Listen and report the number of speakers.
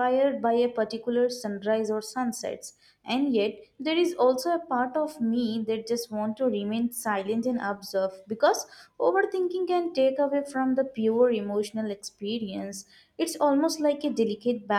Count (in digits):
1